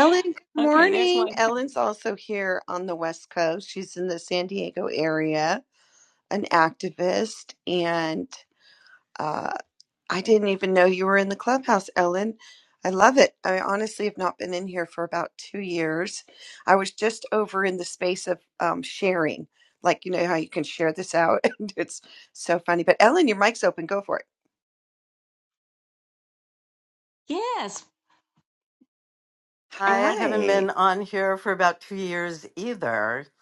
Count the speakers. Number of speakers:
3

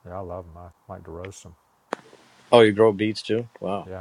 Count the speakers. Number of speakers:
2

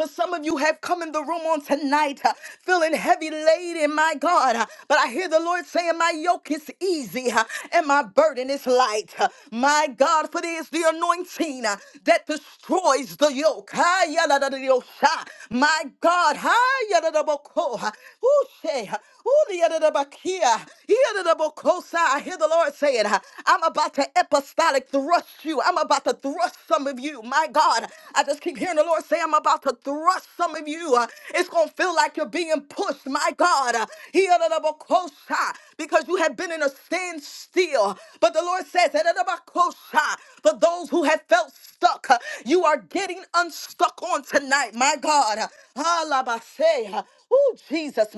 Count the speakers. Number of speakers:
1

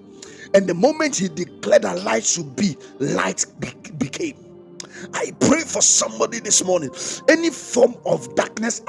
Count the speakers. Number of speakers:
1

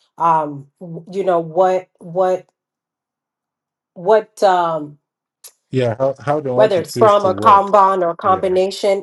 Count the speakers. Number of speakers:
2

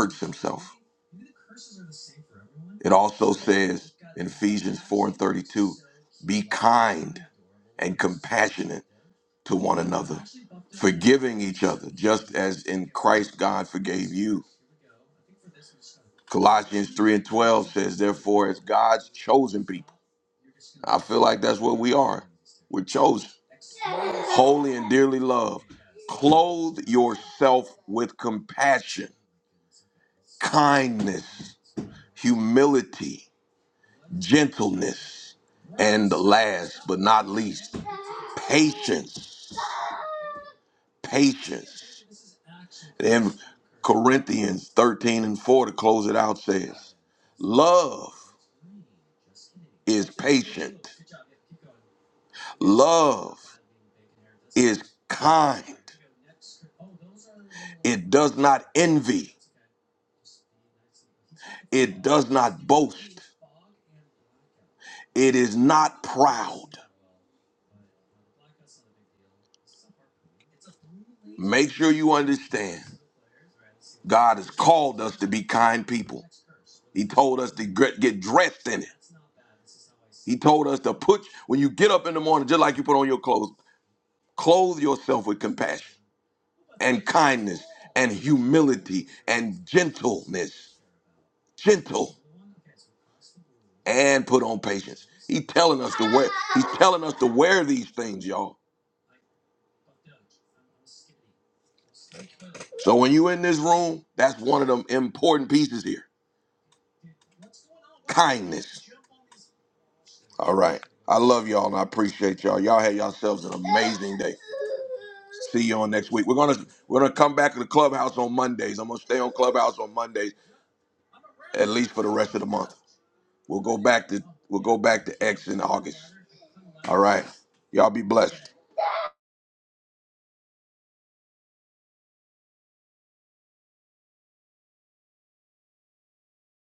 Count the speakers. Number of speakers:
1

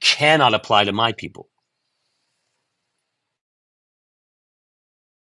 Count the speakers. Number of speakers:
1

